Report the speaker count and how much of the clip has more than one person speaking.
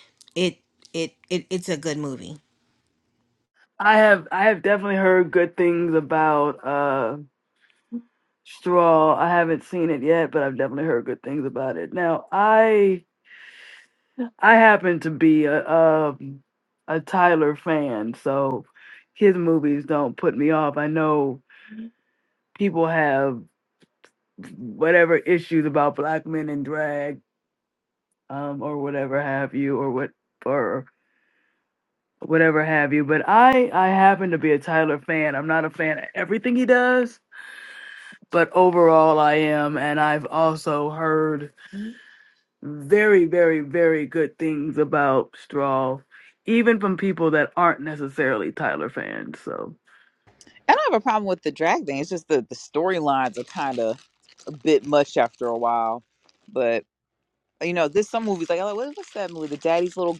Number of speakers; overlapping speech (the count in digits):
3, no overlap